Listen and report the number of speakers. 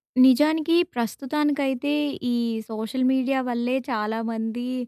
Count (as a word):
one